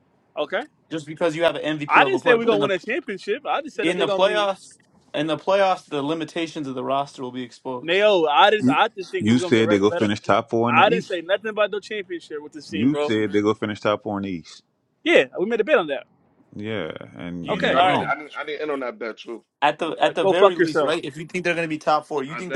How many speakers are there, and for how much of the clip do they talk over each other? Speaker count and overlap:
4, about 24%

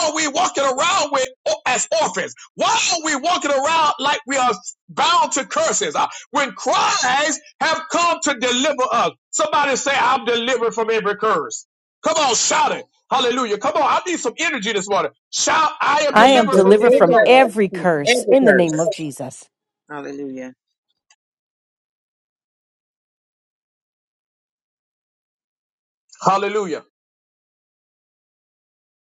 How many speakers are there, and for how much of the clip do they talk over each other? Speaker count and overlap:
3, about 8%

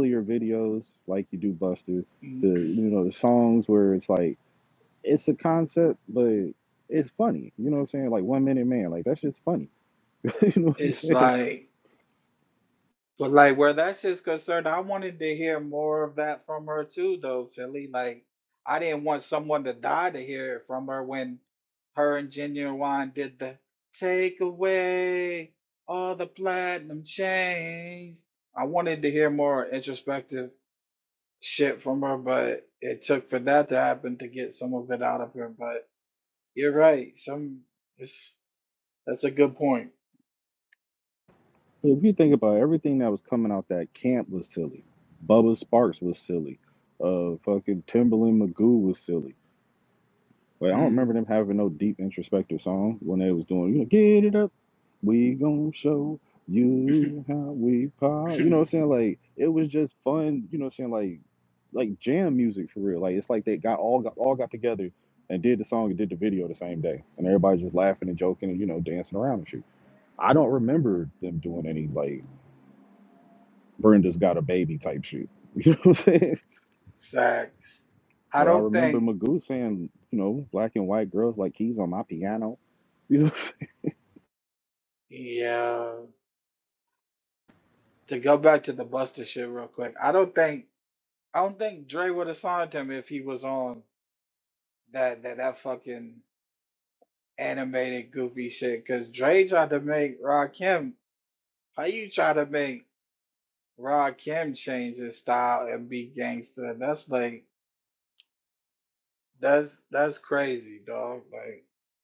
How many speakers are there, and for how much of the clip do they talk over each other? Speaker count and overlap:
2, about 1%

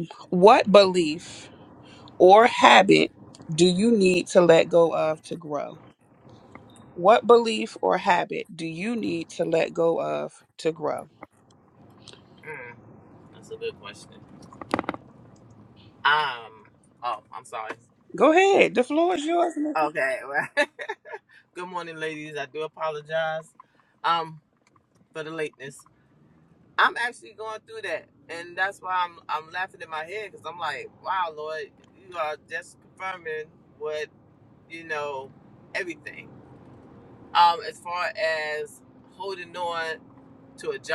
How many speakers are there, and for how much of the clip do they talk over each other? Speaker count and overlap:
2, under 1%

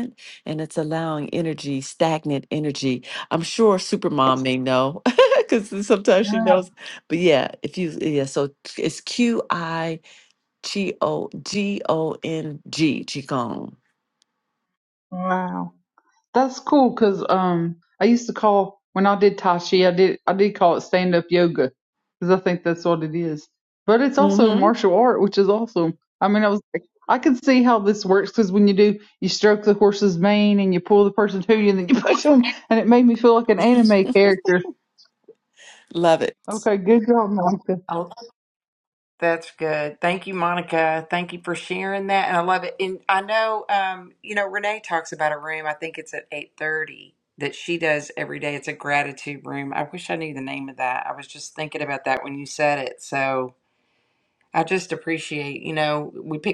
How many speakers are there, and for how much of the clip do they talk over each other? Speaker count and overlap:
3, about 2%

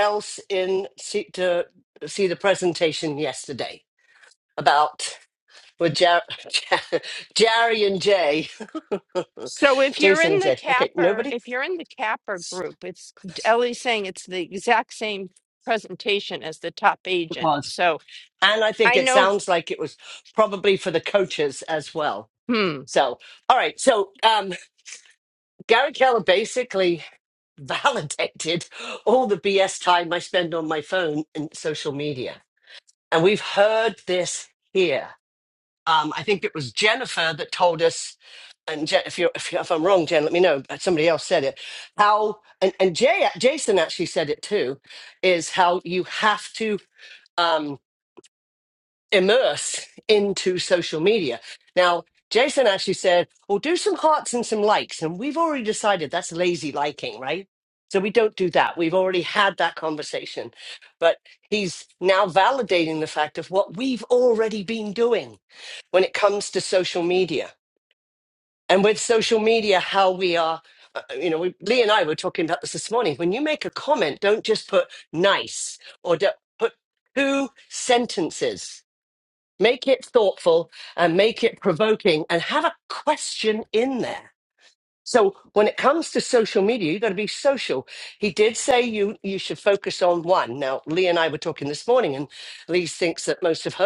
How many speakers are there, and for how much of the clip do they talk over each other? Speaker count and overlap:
2, about 2%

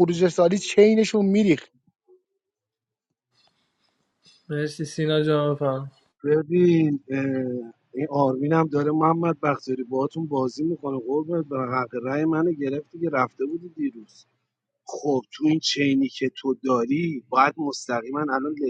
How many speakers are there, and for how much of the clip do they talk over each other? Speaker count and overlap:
3, no overlap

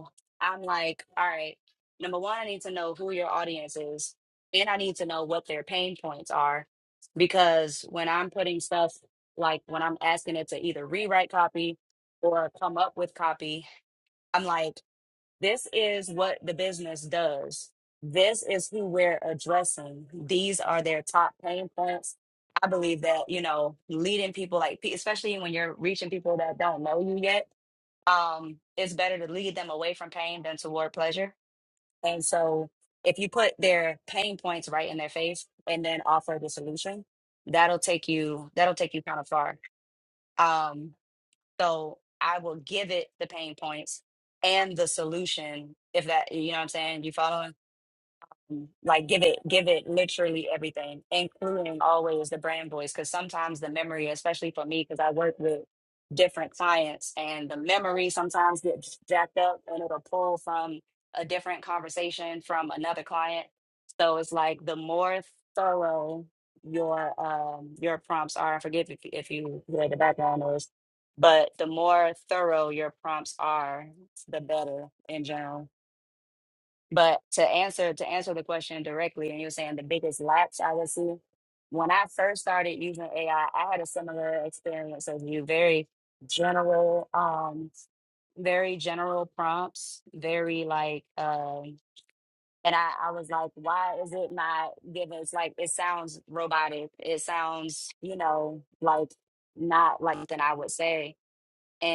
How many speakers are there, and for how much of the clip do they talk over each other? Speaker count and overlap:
1, no overlap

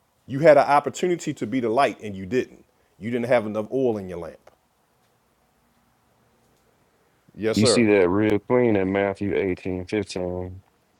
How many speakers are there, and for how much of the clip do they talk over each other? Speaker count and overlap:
2, about 3%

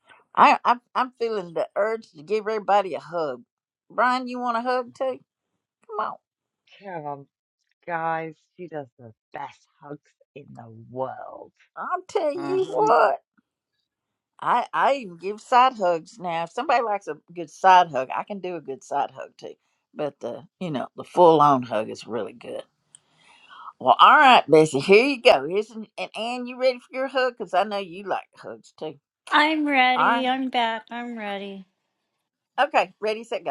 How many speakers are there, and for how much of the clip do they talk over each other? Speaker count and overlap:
3, about 3%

